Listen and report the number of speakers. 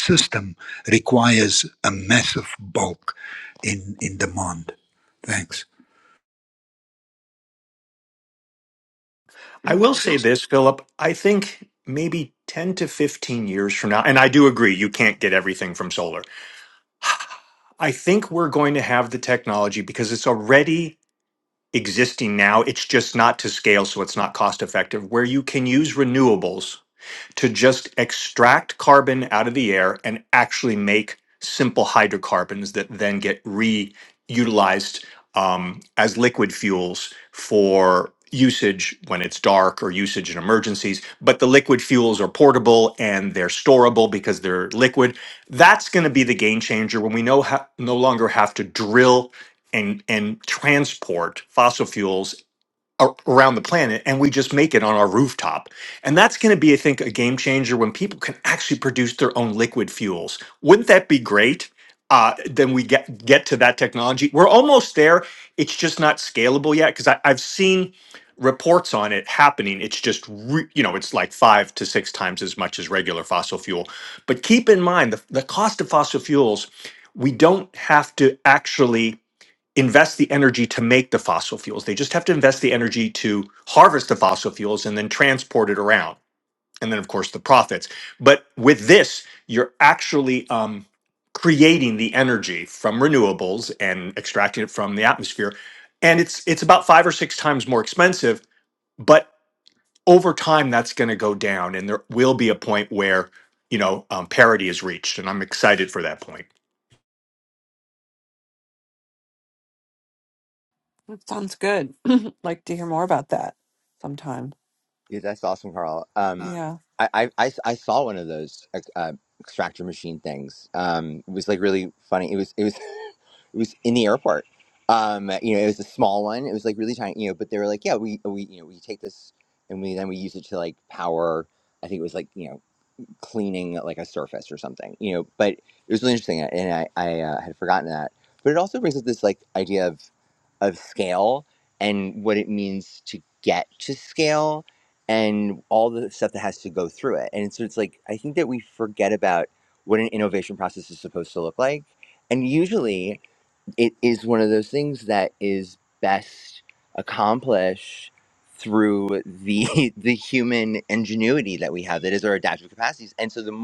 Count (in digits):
4